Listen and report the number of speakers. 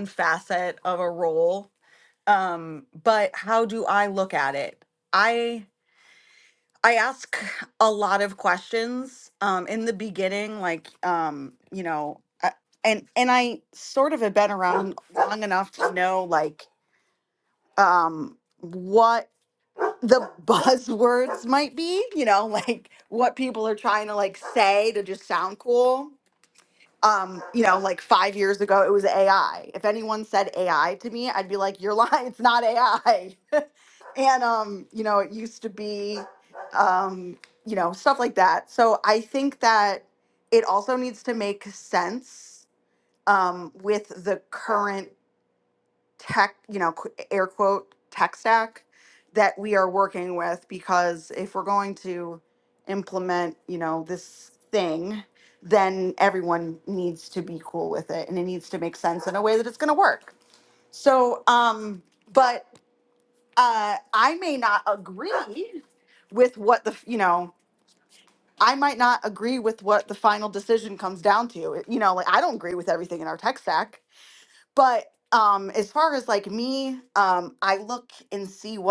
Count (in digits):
1